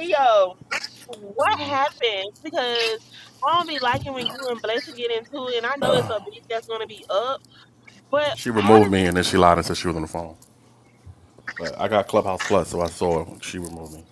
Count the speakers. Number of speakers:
2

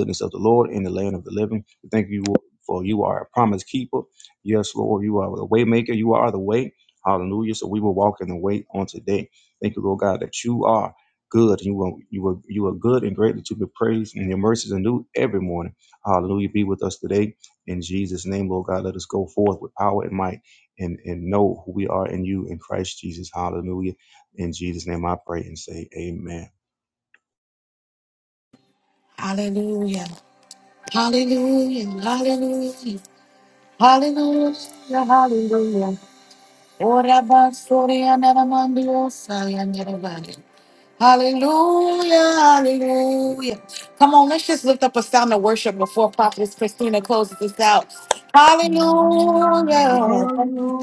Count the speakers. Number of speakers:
3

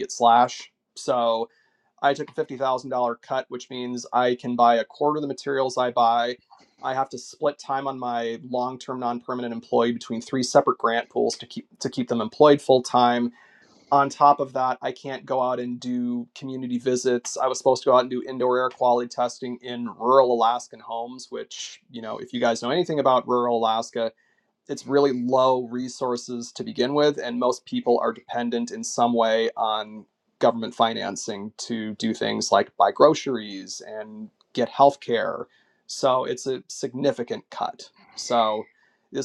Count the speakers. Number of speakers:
1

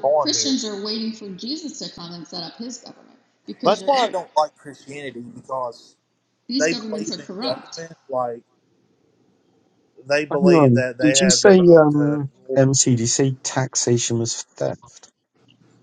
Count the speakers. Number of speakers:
3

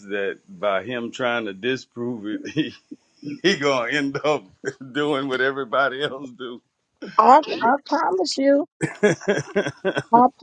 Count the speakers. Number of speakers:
2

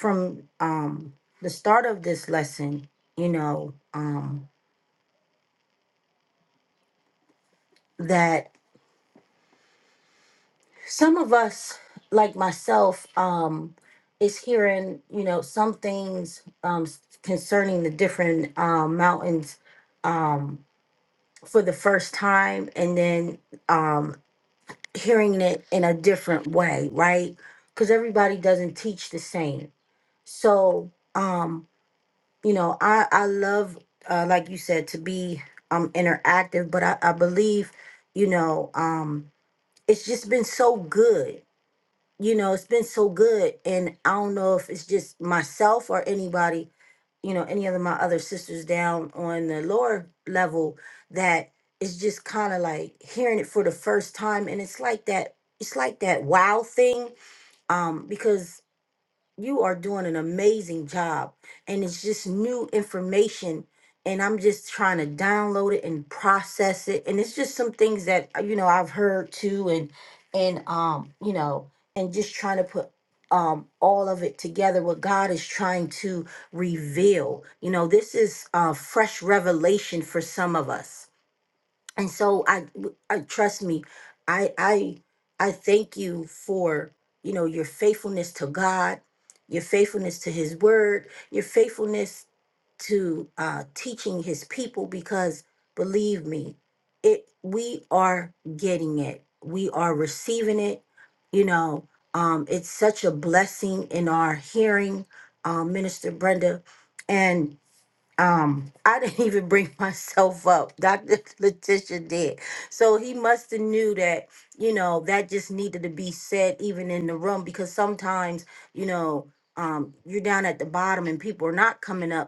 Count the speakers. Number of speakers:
1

